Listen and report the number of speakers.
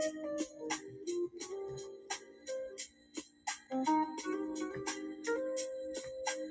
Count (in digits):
0